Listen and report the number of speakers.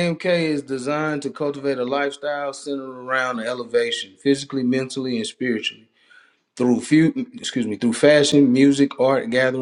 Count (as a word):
one